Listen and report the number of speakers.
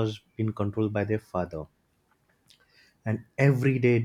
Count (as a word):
one